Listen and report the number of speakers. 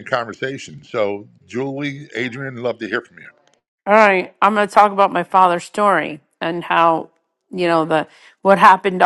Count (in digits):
2